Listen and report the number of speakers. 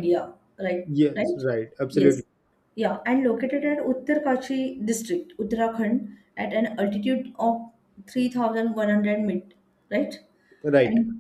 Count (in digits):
2